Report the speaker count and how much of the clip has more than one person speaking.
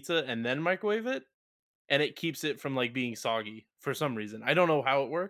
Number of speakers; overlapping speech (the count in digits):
1, no overlap